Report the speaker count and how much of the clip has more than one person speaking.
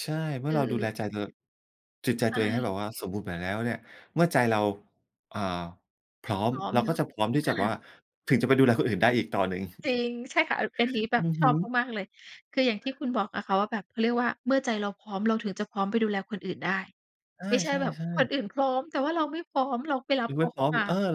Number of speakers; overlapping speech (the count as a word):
two, about 12%